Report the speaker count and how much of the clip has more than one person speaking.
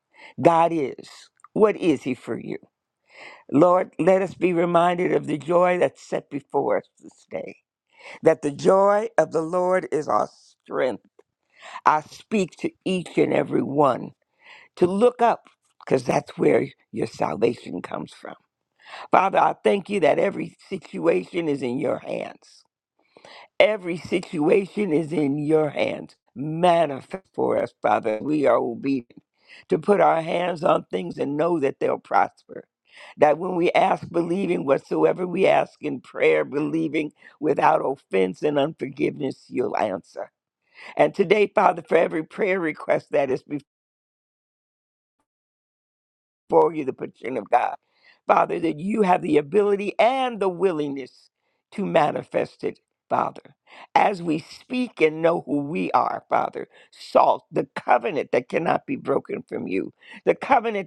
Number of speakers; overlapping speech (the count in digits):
1, no overlap